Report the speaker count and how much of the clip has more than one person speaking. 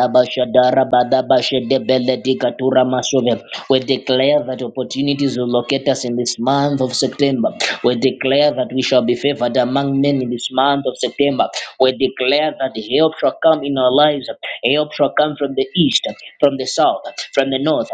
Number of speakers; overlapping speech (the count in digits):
1, no overlap